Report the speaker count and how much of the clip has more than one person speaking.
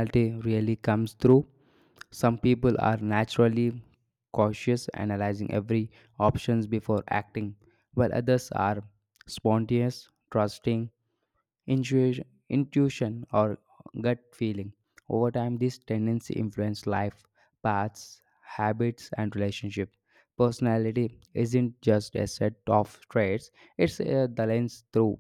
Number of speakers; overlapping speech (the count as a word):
one, no overlap